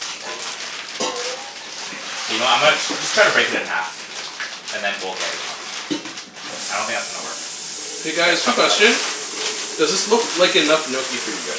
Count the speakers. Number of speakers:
2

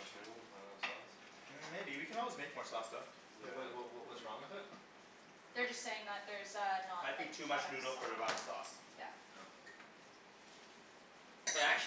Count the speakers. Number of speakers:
4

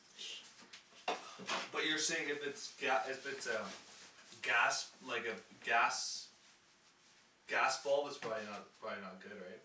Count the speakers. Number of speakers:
1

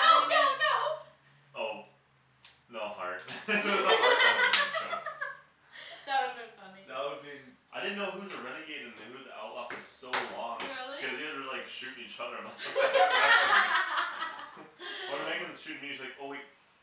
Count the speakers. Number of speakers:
4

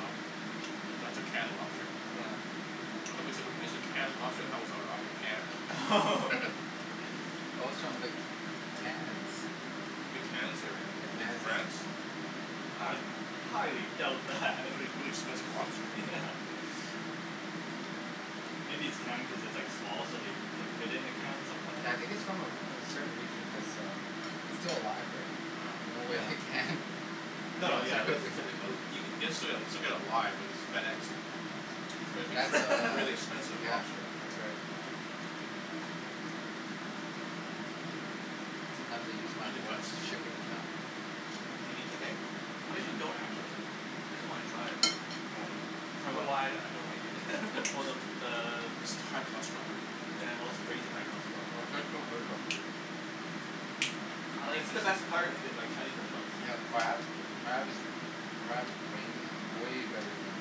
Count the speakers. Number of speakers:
4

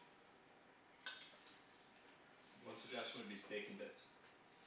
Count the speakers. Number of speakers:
1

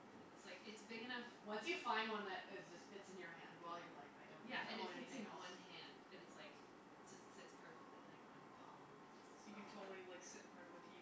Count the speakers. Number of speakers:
3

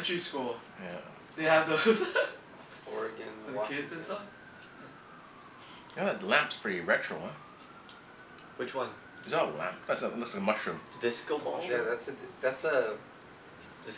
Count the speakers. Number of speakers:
4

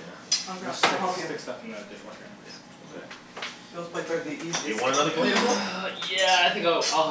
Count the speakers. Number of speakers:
3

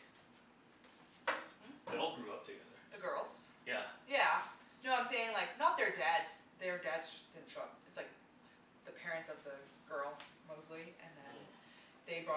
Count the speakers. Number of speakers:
2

